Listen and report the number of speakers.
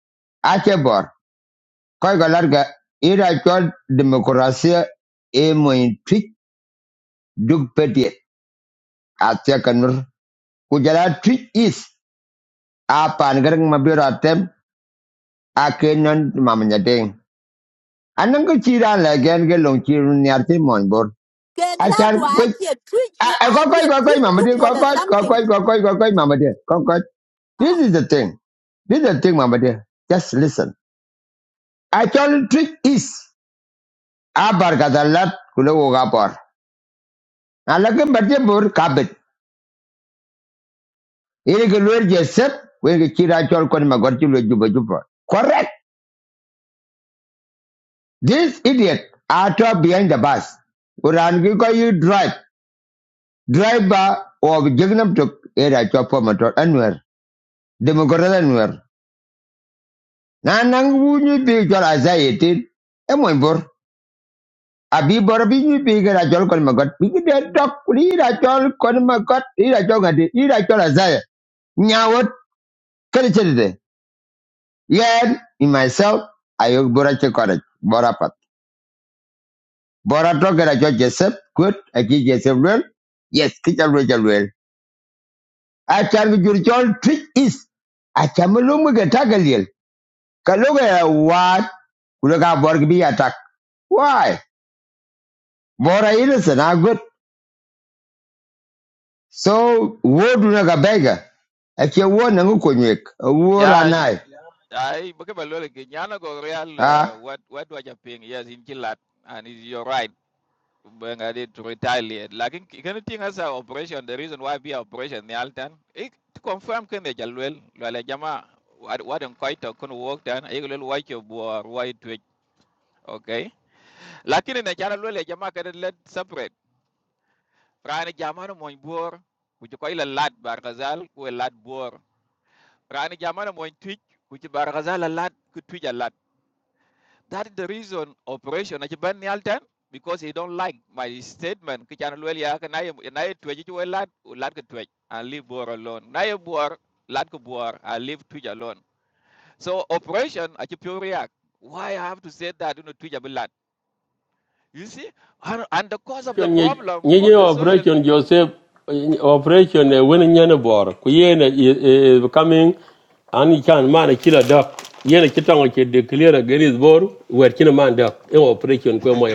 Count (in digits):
4